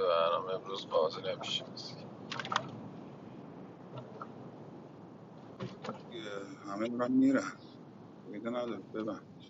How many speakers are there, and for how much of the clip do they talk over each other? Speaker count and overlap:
two, no overlap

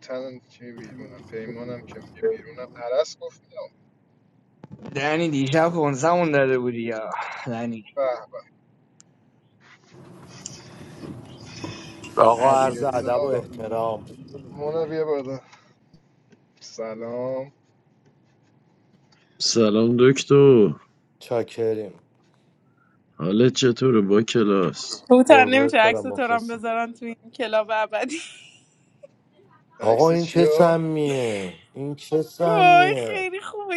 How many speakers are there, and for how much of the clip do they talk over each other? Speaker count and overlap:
five, about 12%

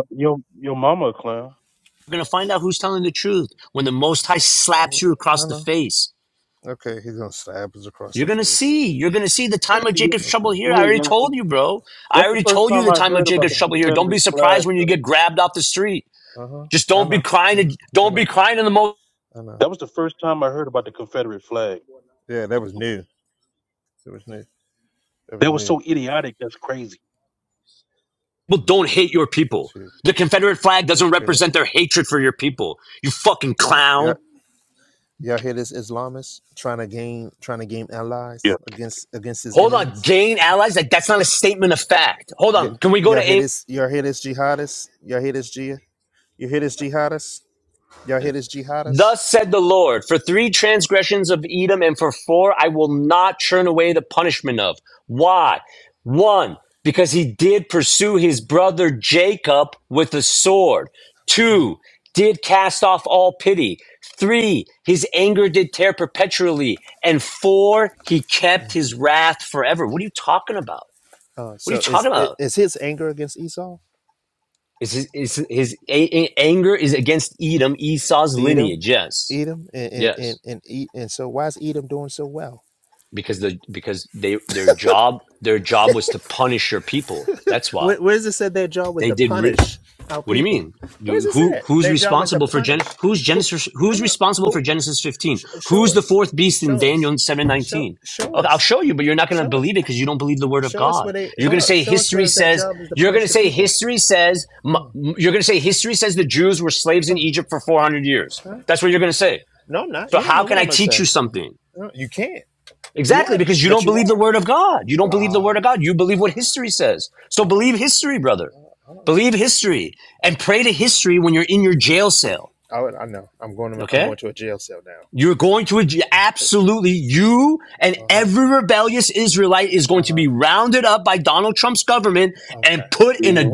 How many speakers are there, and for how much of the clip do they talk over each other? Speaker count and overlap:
three, about 18%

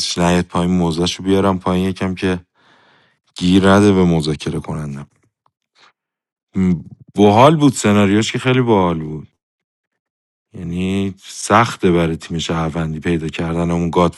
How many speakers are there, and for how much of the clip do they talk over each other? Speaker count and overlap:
one, no overlap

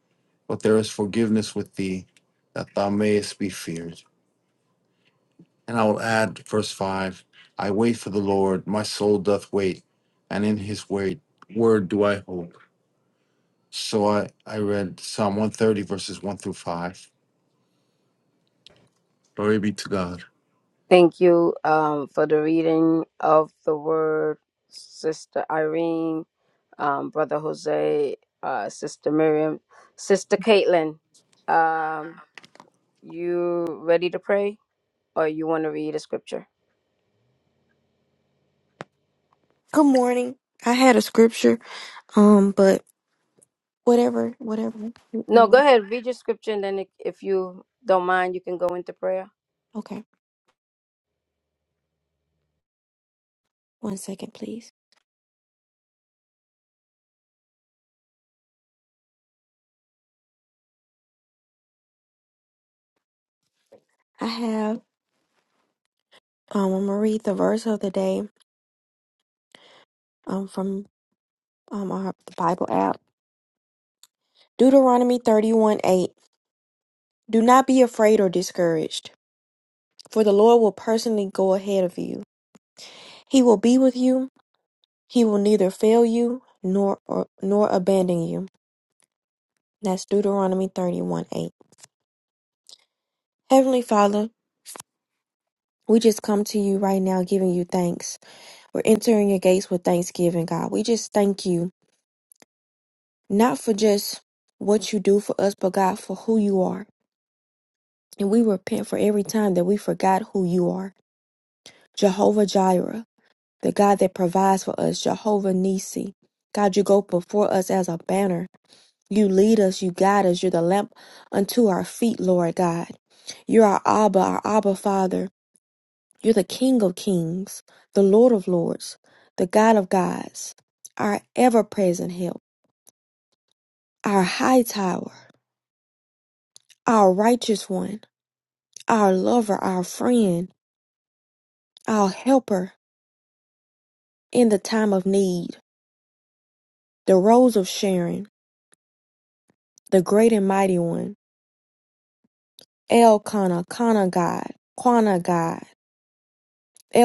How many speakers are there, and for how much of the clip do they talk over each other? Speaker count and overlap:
three, under 1%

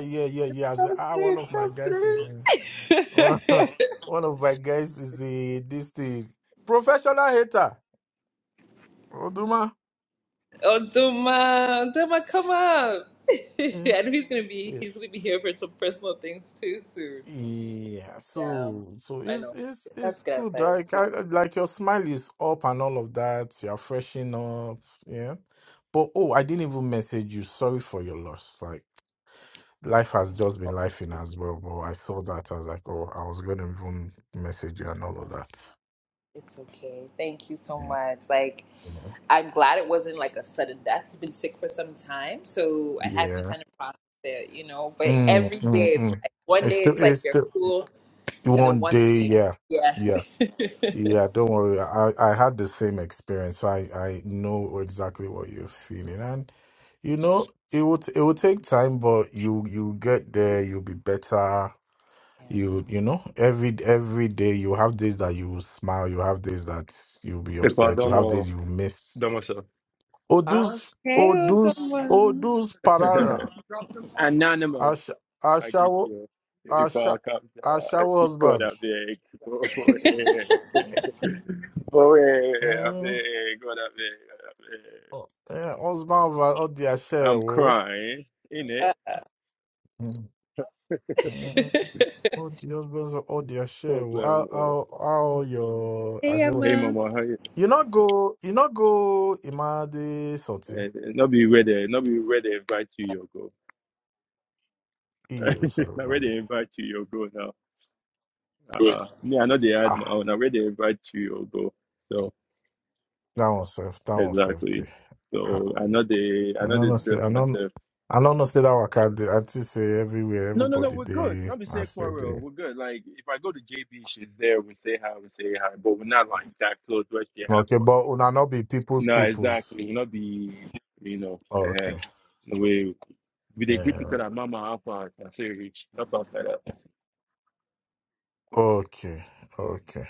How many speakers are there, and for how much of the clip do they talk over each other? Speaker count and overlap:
three, about 13%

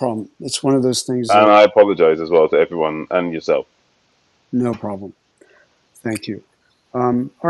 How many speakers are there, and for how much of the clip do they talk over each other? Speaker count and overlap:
two, about 3%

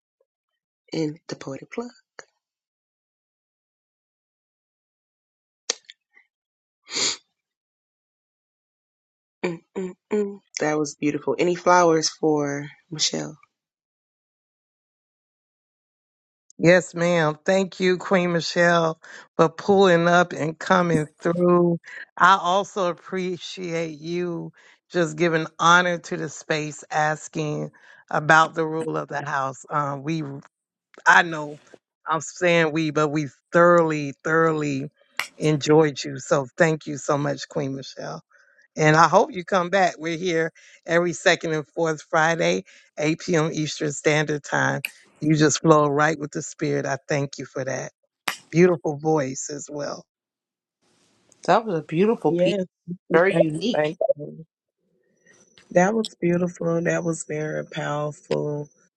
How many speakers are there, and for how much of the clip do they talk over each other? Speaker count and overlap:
four, about 2%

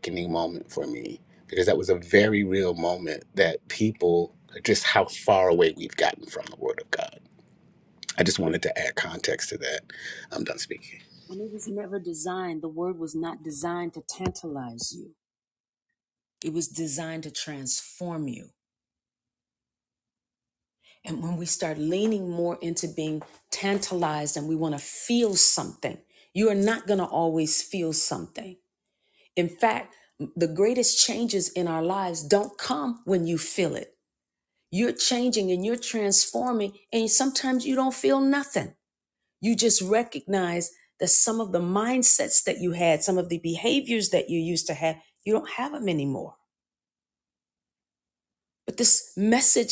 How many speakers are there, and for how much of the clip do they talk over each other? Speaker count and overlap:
two, no overlap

